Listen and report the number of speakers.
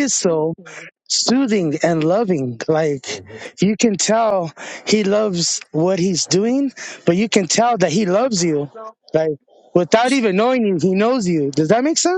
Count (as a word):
one